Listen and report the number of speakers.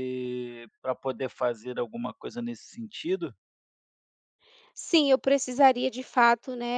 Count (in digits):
2